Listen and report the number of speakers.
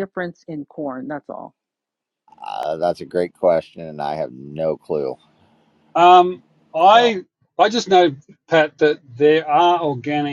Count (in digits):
3